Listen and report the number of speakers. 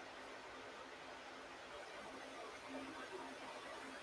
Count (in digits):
0